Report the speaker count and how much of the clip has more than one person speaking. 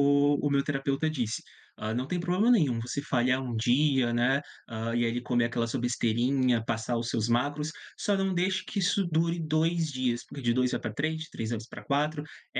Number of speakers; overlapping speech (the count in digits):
1, no overlap